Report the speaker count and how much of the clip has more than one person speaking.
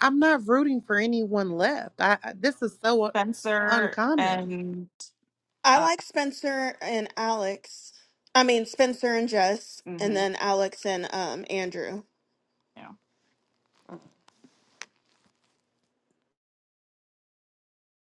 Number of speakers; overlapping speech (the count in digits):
3, about 7%